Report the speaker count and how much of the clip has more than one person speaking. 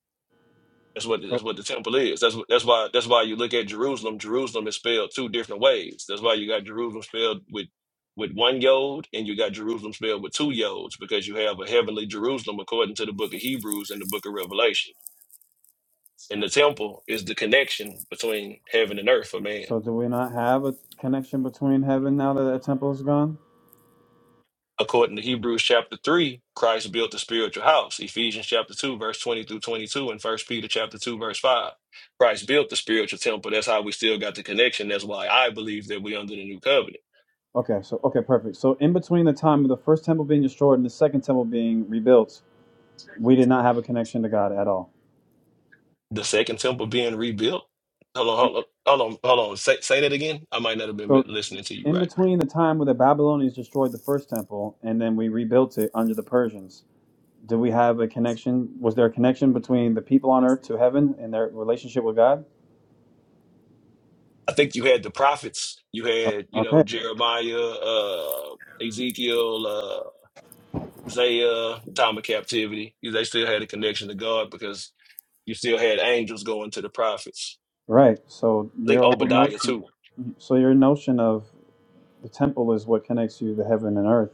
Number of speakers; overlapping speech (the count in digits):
2, about 2%